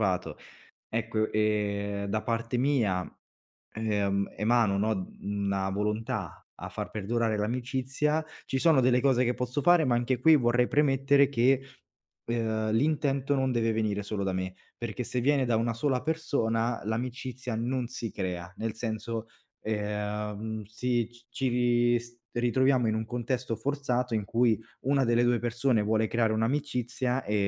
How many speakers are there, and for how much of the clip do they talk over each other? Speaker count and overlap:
1, no overlap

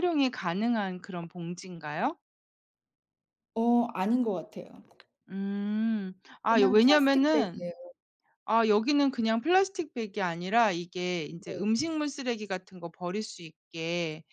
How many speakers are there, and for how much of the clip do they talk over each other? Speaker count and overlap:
2, about 10%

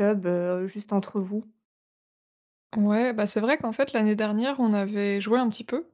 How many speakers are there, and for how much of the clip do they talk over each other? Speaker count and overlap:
2, no overlap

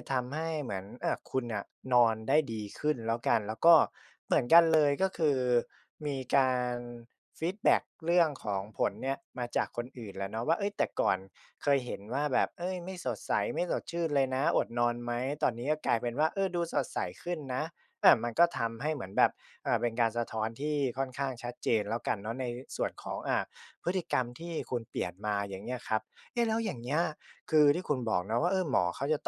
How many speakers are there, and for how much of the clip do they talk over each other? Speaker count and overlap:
1, no overlap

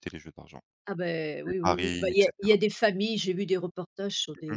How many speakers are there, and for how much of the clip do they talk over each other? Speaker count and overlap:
2, about 29%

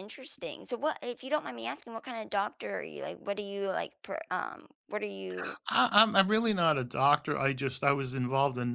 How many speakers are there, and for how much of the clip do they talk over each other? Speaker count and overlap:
2, no overlap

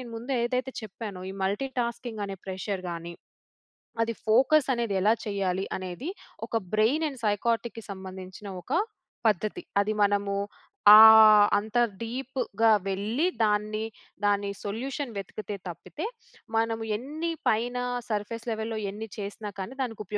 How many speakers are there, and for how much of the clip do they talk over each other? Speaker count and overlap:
1, no overlap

